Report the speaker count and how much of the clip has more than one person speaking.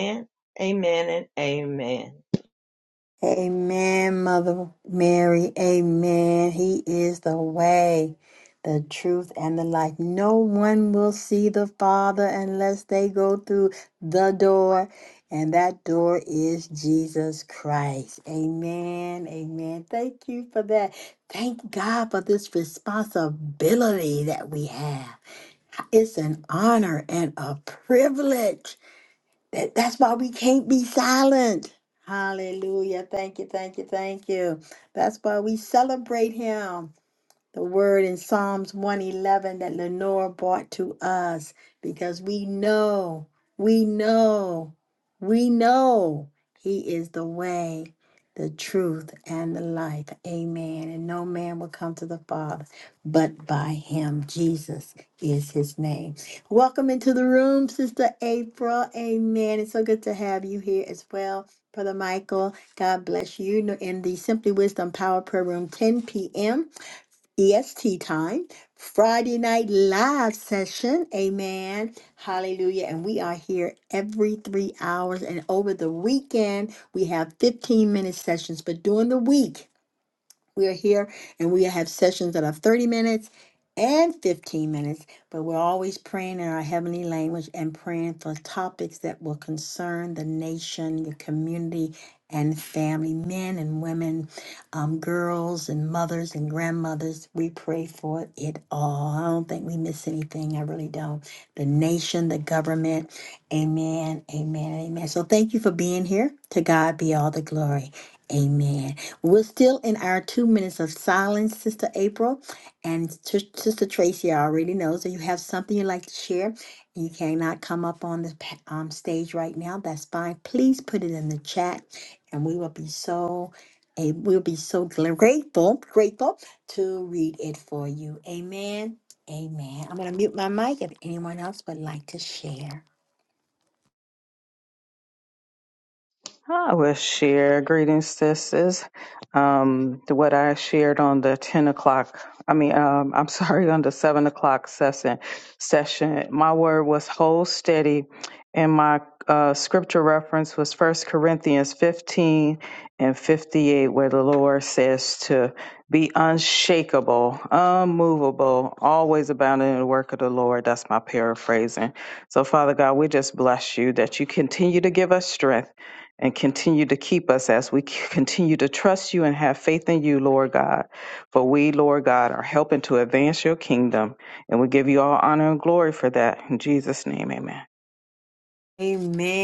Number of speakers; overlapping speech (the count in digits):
3, no overlap